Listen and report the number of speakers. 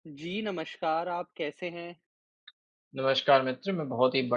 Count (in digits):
2